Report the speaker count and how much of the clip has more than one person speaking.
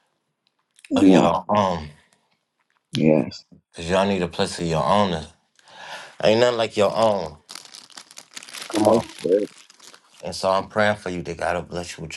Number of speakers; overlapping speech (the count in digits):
2, about 6%